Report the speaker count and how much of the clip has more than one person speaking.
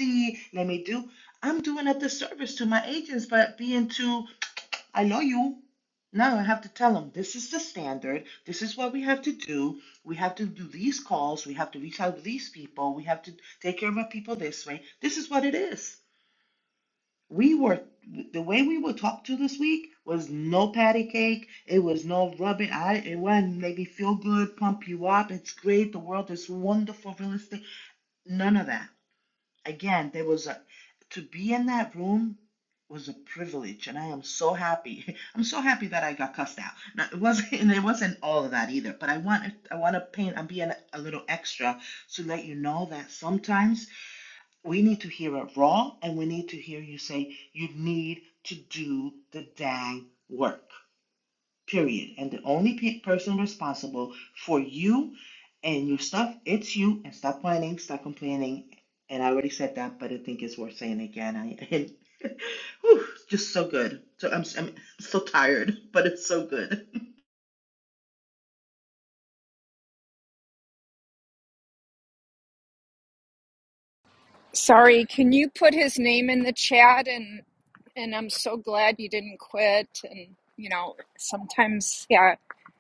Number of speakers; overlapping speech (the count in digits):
2, no overlap